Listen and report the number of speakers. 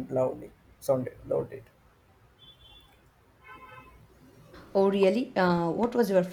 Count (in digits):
2